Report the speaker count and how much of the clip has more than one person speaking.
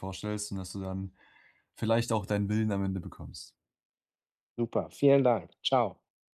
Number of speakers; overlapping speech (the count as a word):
two, no overlap